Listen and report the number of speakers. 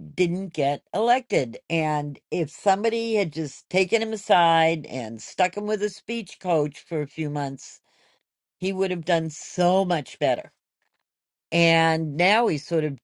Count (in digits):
1